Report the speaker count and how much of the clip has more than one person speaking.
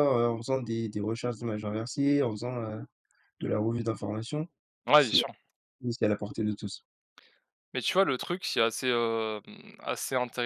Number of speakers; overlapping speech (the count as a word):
two, about 2%